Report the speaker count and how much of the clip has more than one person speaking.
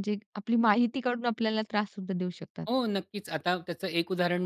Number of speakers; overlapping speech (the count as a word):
two, about 3%